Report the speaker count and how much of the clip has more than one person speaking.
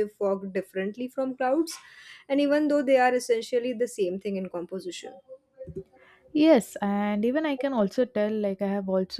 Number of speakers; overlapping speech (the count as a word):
two, no overlap